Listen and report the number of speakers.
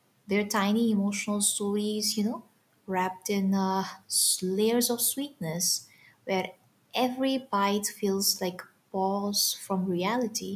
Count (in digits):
1